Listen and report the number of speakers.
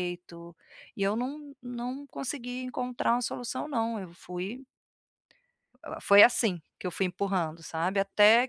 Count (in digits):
1